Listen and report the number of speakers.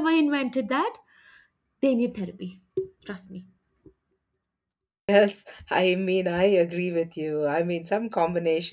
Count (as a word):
two